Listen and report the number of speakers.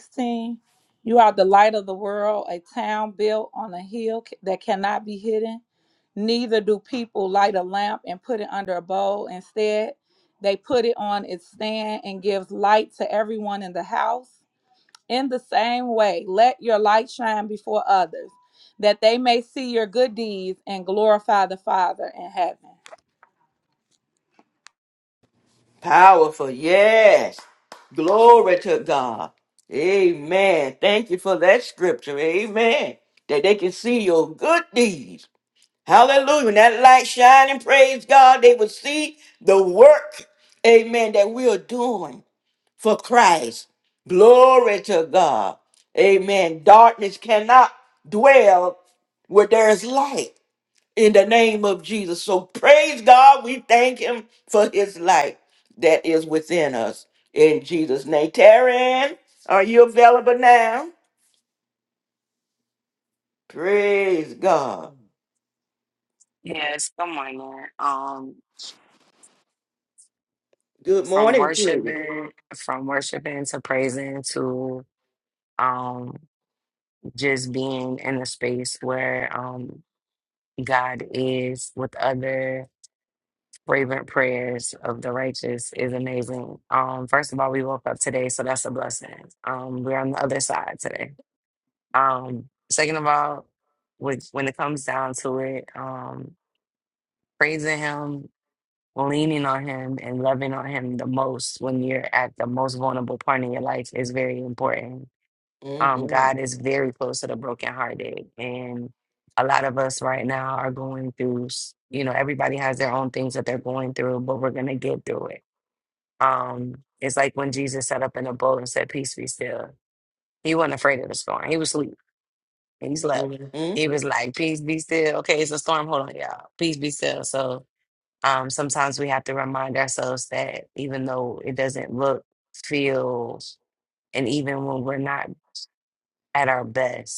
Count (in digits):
3